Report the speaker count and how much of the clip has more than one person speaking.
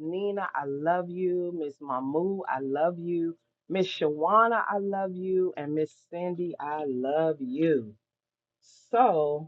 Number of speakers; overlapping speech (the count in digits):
1, no overlap